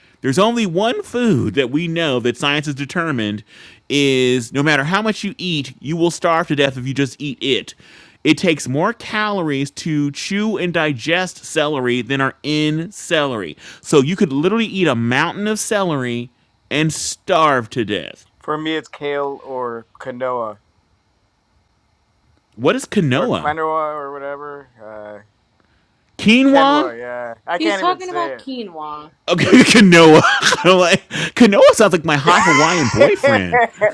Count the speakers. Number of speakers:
3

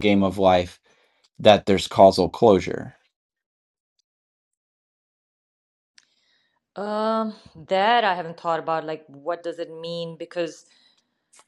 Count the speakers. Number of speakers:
2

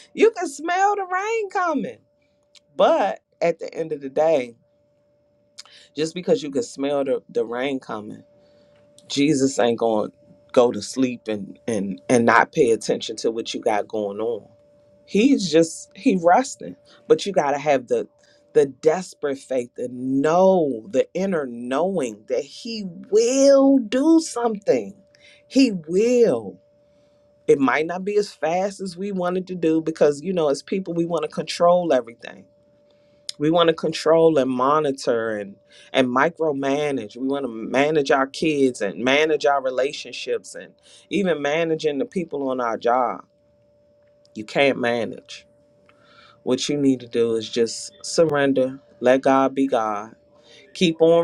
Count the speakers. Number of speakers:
1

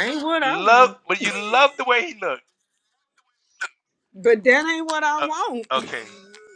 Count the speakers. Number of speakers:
2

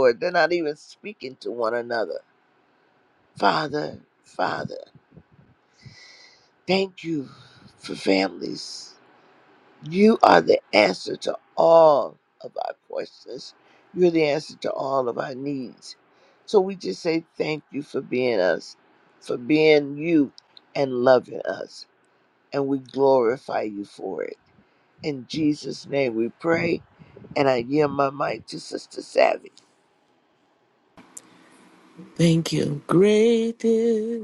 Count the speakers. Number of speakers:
2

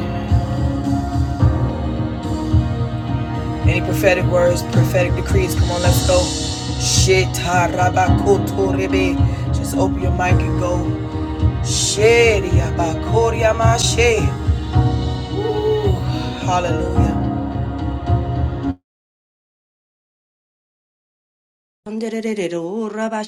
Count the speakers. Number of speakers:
2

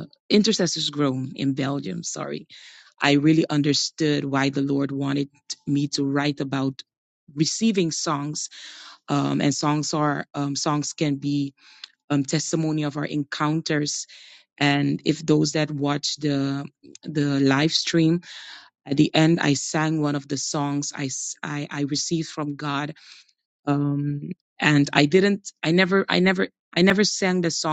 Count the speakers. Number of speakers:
1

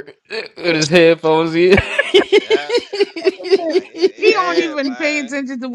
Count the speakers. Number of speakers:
3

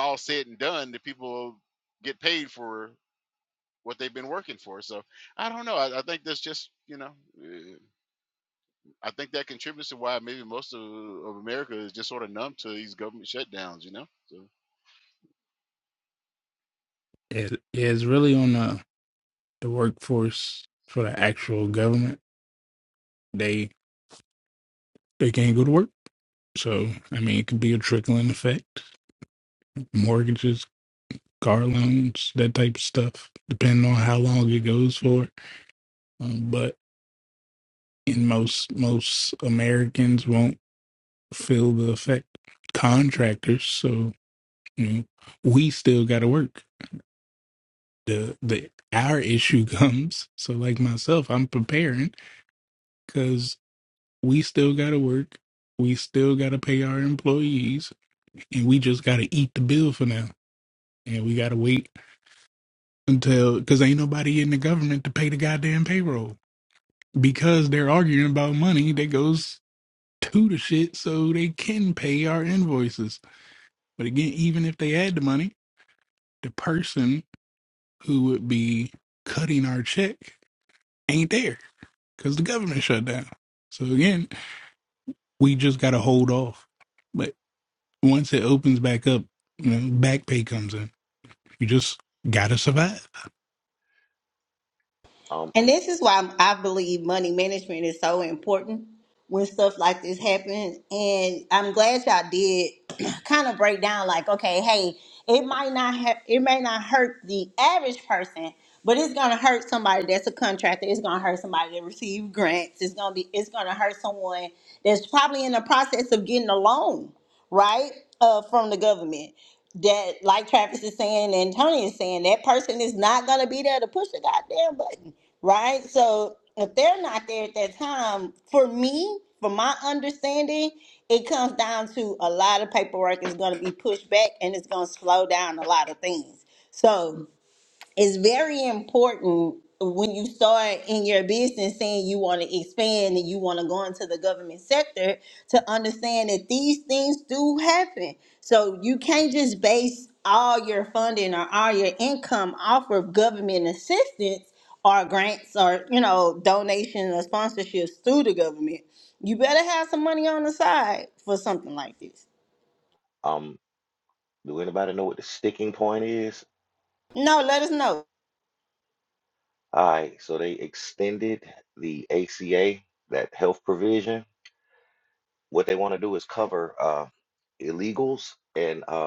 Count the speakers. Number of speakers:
4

